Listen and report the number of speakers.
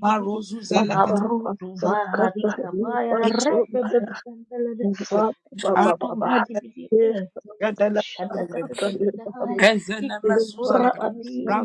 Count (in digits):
3